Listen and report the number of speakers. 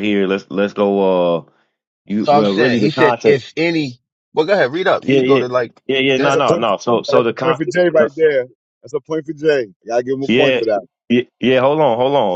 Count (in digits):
3